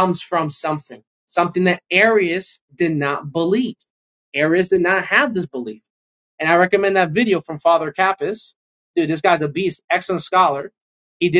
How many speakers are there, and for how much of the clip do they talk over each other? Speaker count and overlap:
1, no overlap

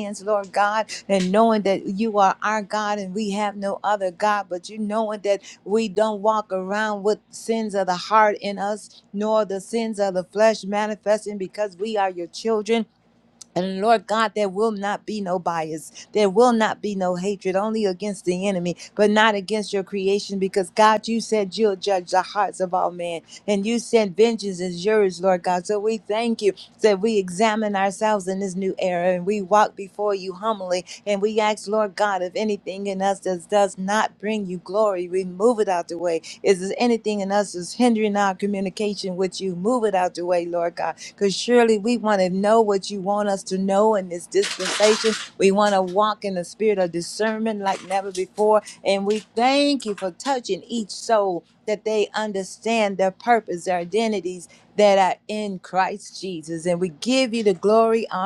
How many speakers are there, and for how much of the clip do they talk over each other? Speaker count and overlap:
1, no overlap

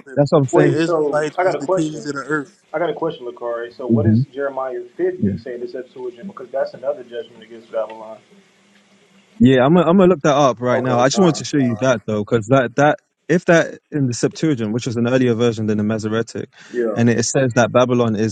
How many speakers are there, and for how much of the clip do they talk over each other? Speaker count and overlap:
3, about 18%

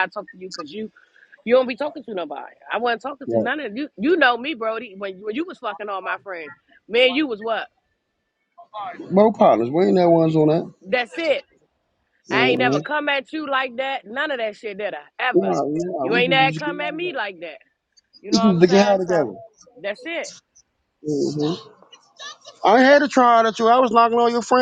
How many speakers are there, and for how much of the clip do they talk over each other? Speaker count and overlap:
2, about 11%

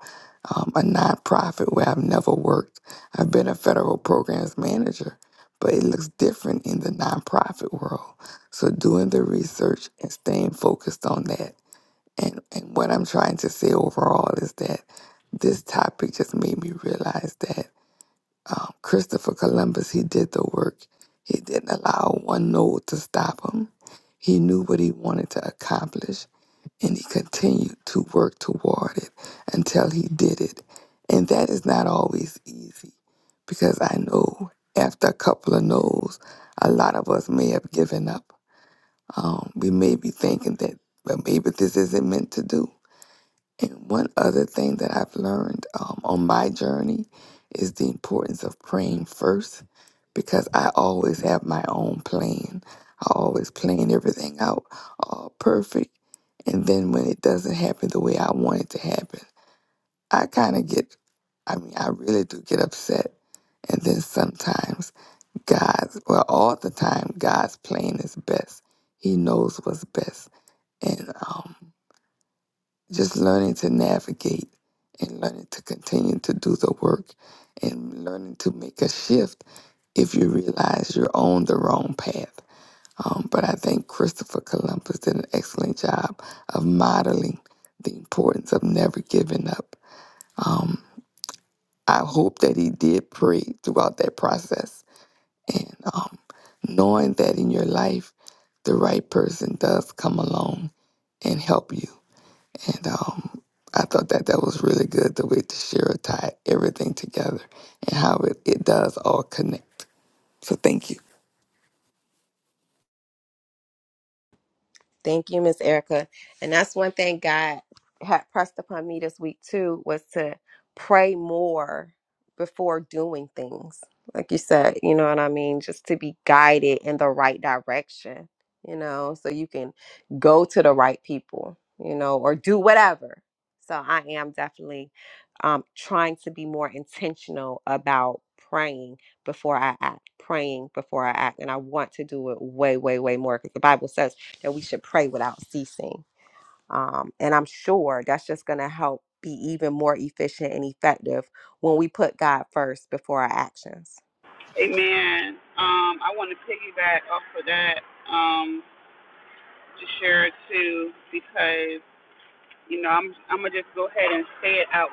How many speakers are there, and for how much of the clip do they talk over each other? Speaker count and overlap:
3, no overlap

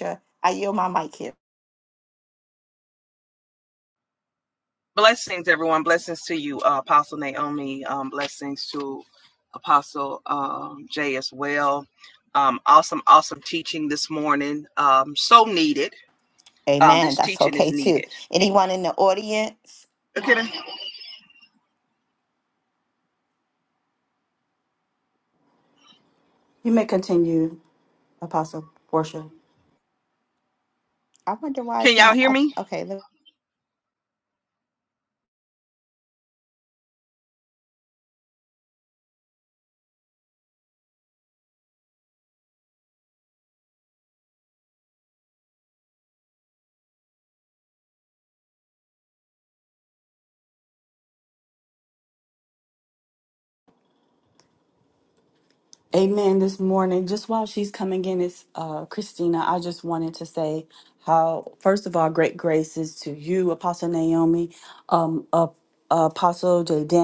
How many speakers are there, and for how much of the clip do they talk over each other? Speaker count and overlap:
3, about 3%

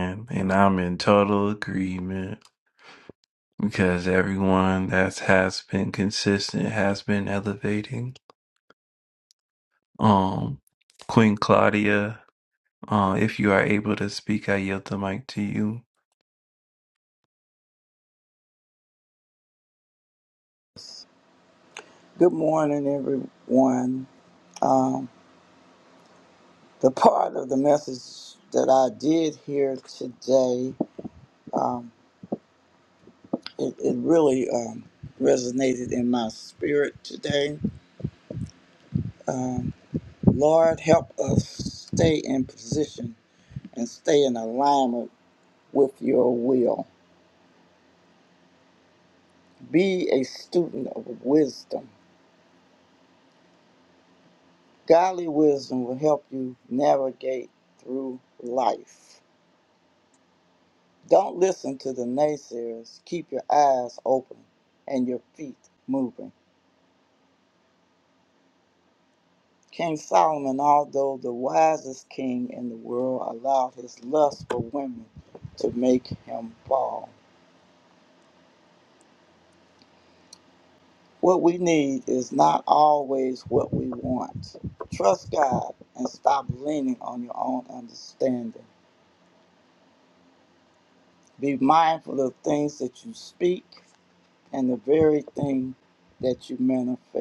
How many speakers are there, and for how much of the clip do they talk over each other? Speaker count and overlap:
2, no overlap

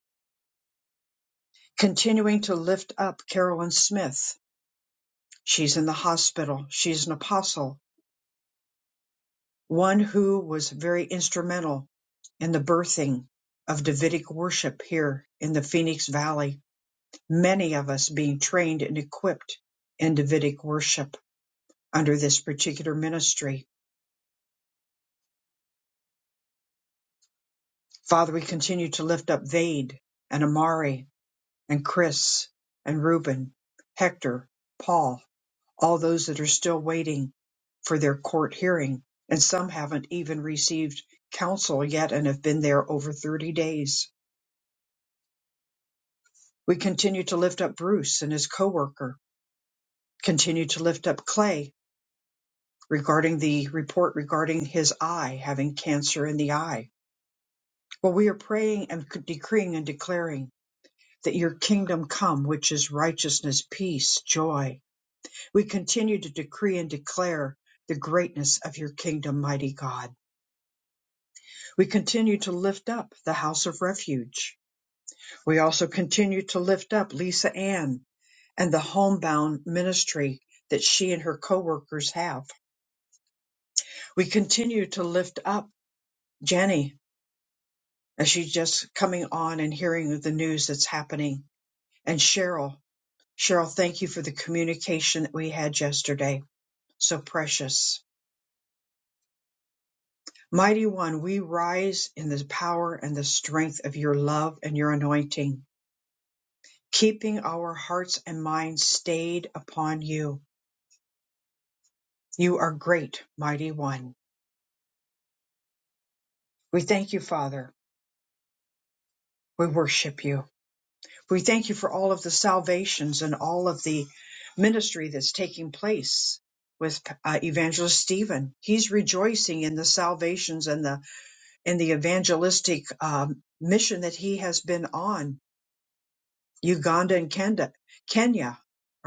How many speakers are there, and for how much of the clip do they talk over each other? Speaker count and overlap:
1, no overlap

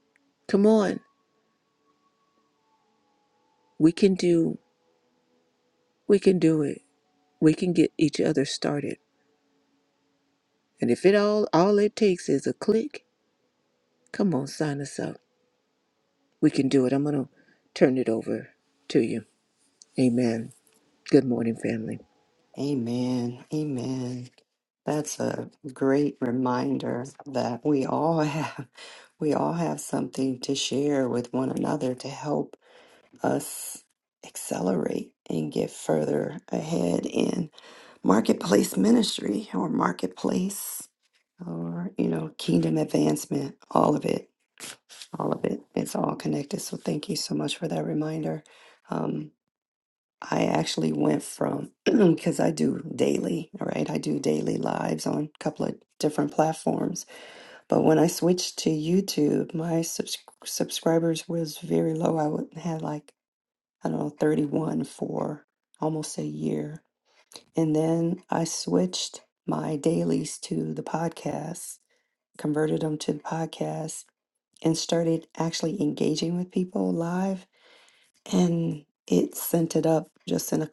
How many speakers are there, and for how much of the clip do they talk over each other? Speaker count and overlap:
2, no overlap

